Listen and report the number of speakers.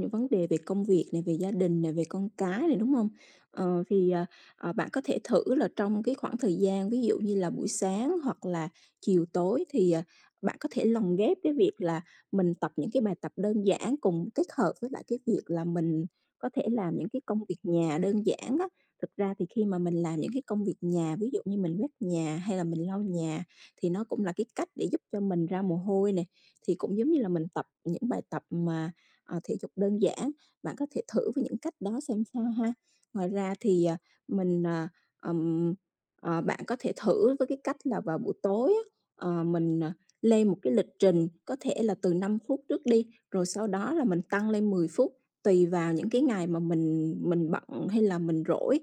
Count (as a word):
one